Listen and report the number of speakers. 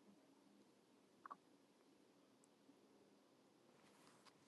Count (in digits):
0